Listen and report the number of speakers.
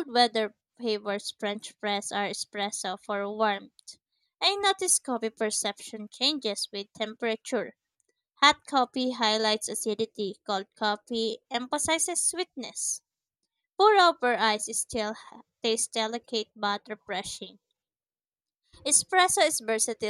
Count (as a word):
one